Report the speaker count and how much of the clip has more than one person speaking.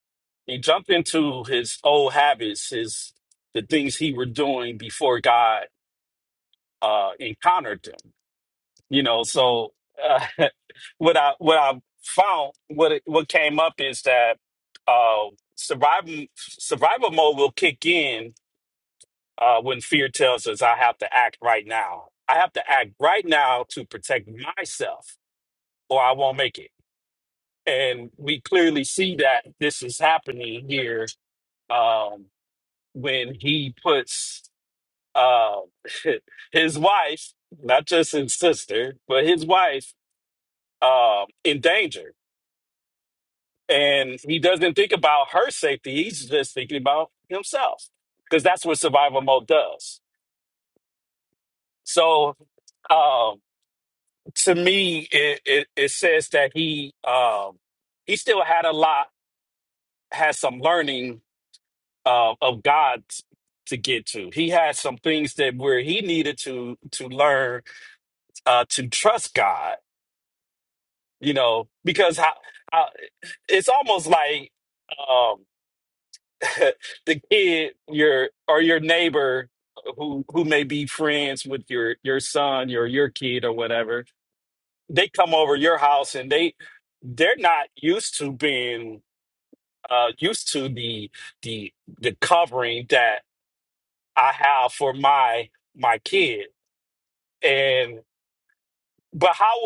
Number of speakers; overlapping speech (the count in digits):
1, no overlap